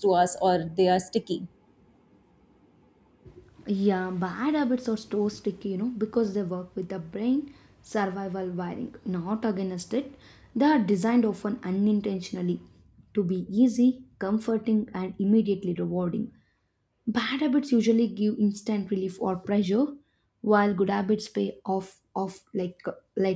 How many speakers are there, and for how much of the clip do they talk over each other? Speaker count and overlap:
two, no overlap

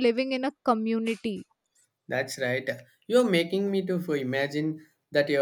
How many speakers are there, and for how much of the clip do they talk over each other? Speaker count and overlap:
two, no overlap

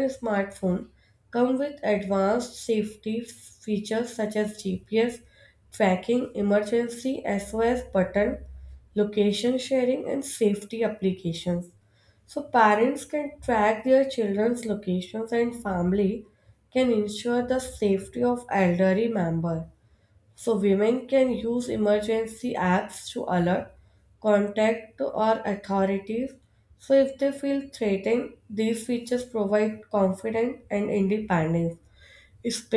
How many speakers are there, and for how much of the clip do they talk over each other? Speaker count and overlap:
one, no overlap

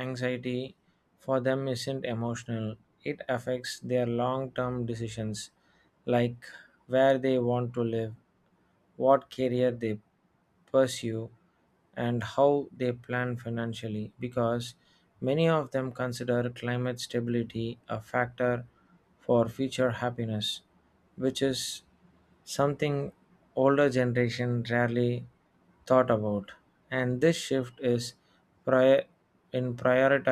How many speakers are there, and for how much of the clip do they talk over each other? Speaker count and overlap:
one, no overlap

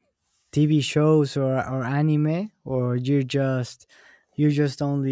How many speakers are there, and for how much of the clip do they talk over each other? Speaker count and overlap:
one, no overlap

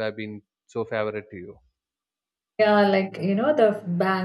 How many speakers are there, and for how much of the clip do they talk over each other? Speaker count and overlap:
two, no overlap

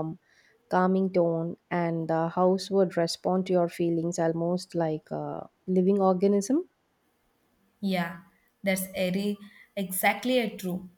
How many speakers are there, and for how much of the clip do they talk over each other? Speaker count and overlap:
two, no overlap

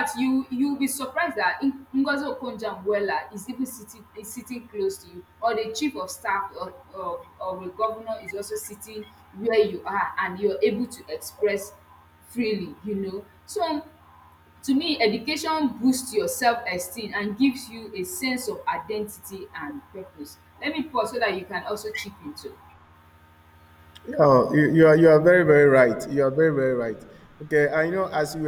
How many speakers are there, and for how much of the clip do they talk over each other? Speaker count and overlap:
two, no overlap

